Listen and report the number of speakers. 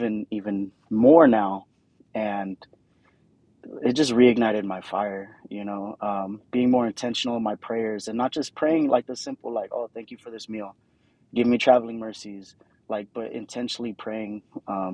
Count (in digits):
1